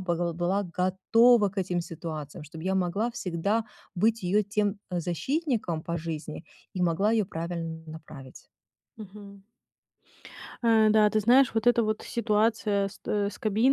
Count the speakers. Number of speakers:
2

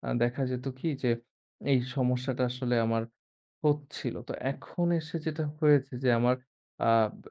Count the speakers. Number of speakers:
1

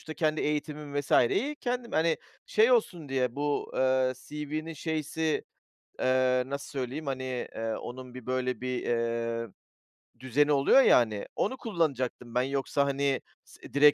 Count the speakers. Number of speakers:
1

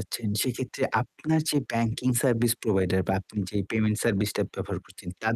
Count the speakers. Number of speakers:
1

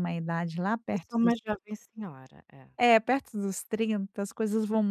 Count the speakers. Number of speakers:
2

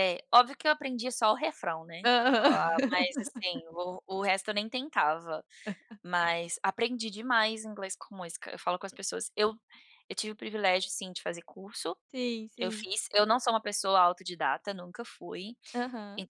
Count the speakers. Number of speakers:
2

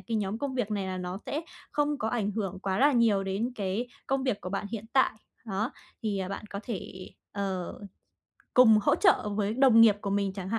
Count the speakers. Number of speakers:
1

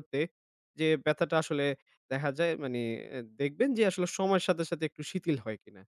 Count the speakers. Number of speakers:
1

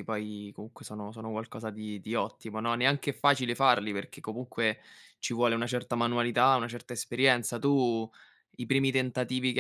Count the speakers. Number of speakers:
1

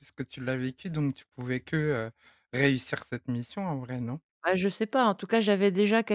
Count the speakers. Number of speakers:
2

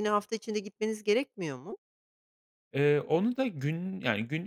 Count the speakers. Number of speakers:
2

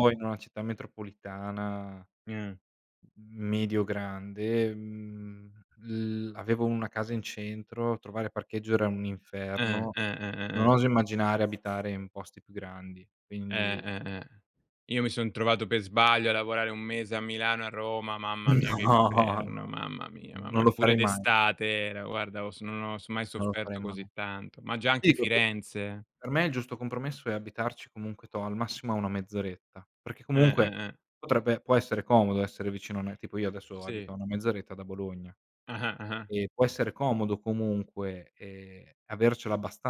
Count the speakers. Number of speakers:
2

